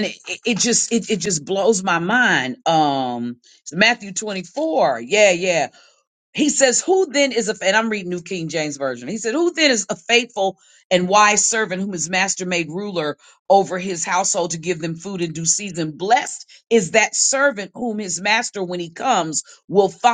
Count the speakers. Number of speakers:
one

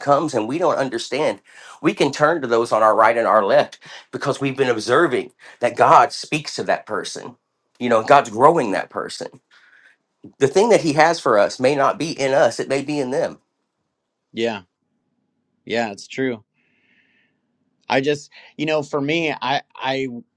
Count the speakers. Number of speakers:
two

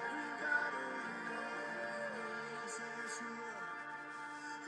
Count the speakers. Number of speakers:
zero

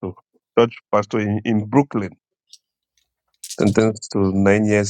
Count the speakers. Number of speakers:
one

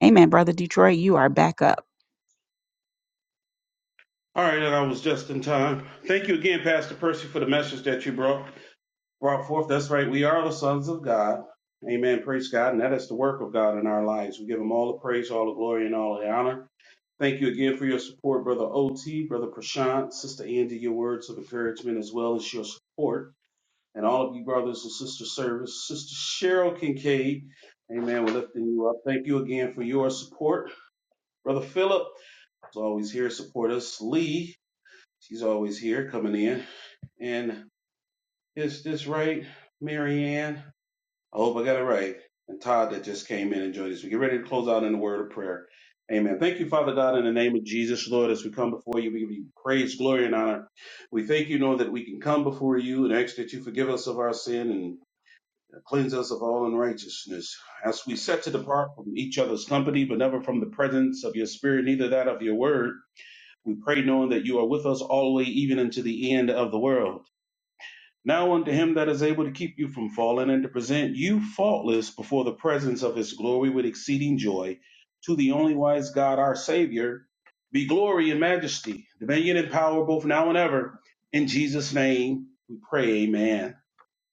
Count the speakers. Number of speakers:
two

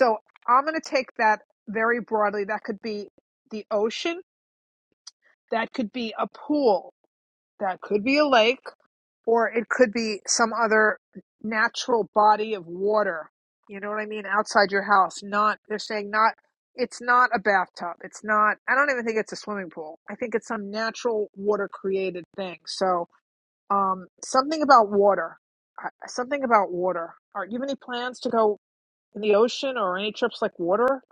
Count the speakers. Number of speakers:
one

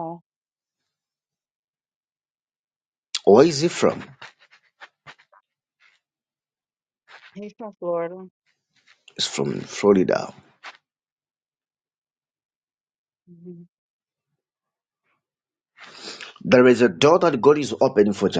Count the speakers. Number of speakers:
two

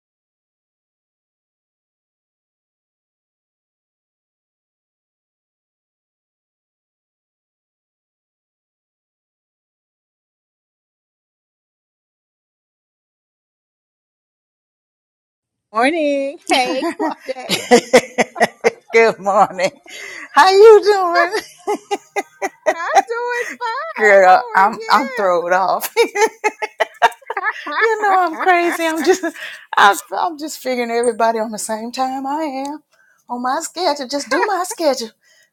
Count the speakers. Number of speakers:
two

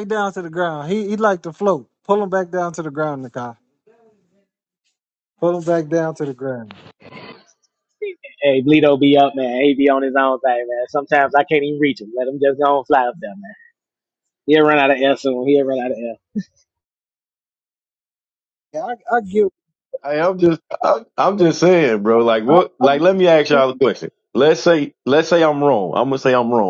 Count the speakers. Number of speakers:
three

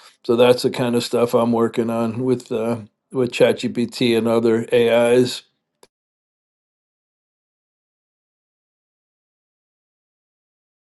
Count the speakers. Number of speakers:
one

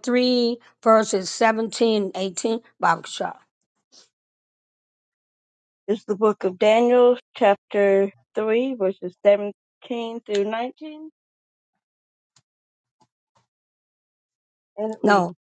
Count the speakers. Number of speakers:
two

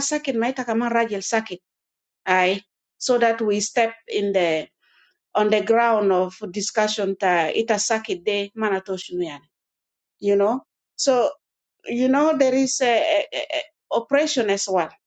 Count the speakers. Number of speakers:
one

